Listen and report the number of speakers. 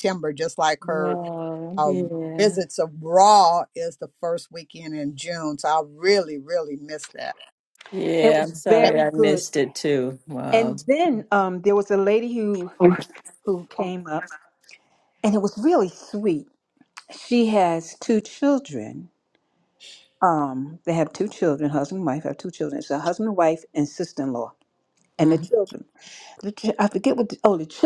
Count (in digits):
3